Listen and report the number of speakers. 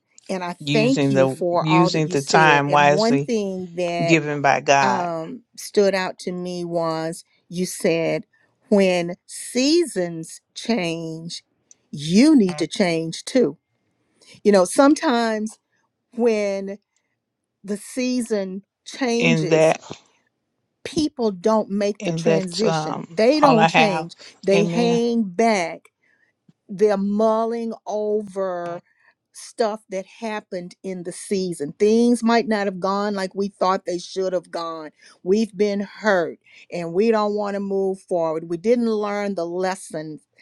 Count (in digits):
2